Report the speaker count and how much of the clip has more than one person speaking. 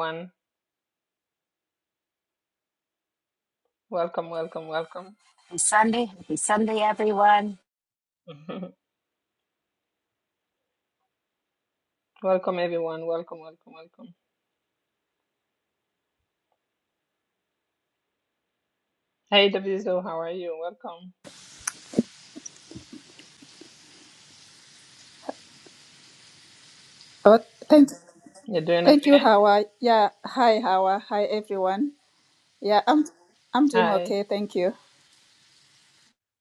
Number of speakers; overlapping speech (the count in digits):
3, about 2%